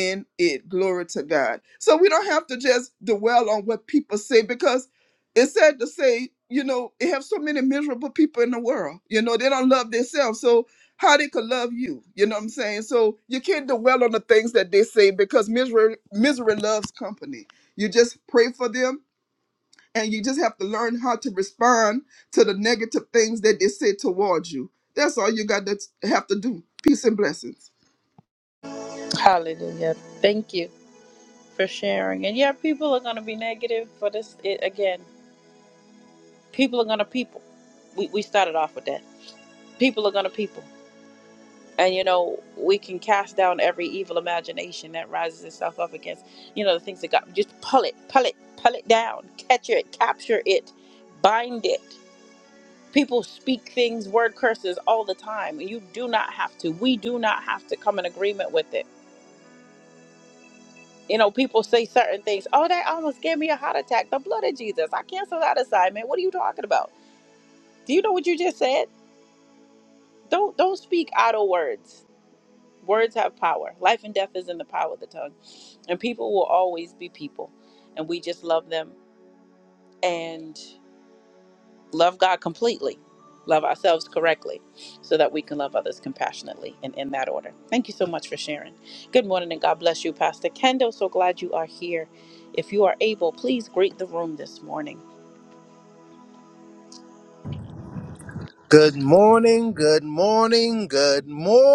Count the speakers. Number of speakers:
three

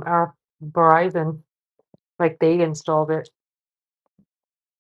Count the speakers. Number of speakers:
one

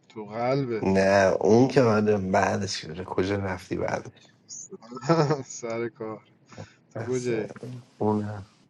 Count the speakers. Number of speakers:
two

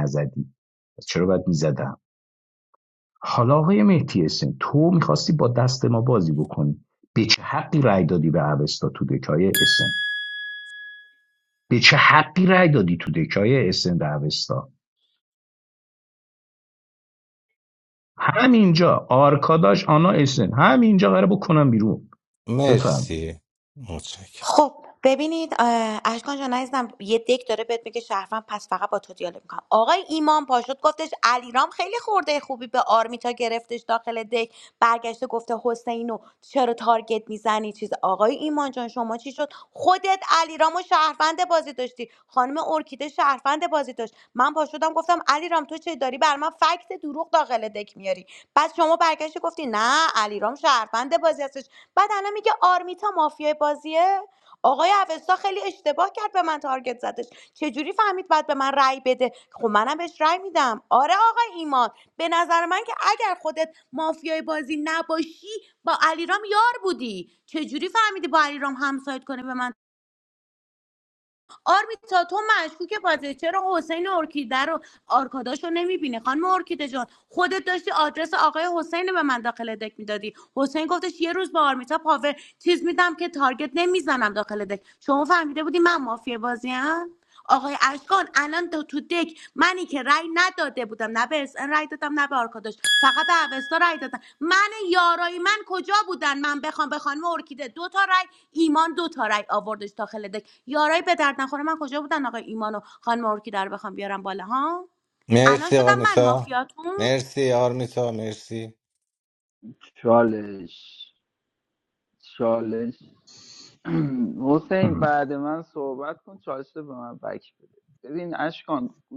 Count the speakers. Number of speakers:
four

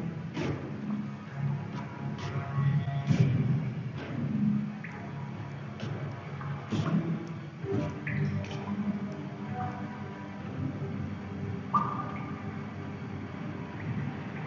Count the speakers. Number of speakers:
zero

